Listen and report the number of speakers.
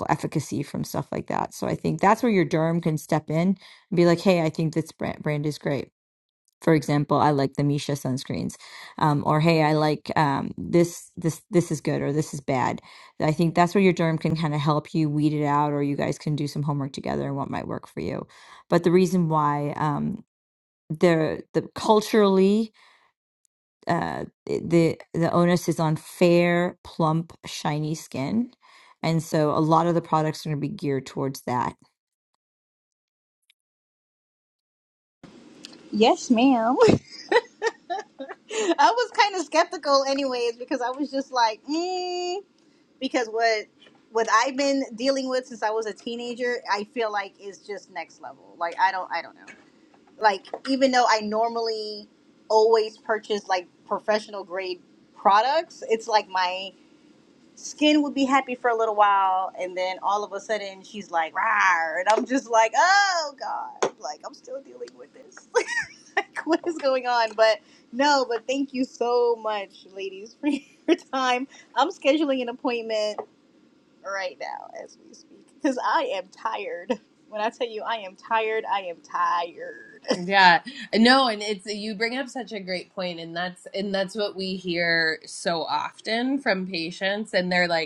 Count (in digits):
3